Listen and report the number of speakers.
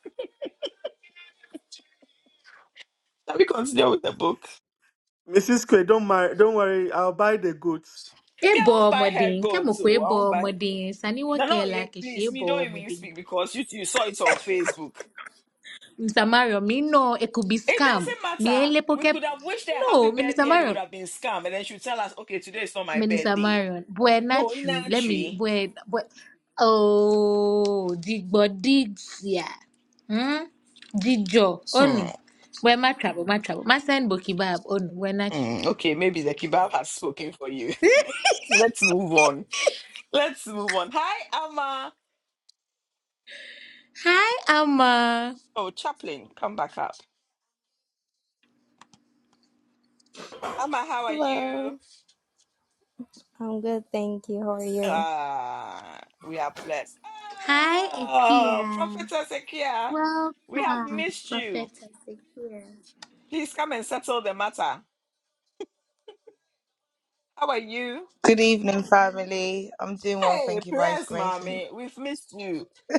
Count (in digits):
5